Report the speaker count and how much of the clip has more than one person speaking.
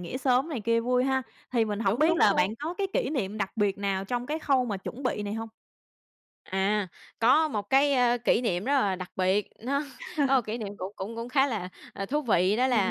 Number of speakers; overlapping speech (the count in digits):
2, about 7%